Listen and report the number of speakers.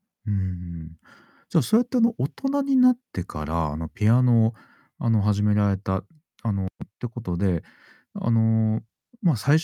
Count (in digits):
1